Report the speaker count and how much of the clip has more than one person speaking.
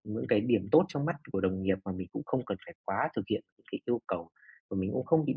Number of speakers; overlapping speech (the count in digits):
1, no overlap